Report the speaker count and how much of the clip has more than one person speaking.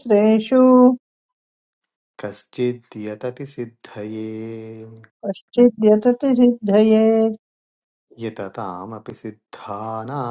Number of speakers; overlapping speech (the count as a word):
two, no overlap